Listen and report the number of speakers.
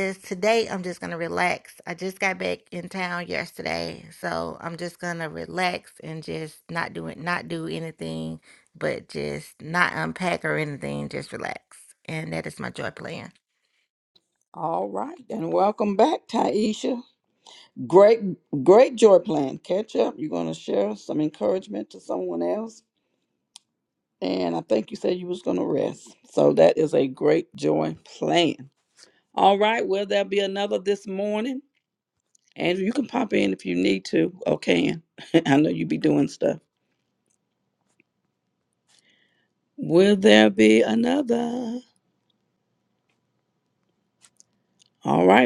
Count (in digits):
2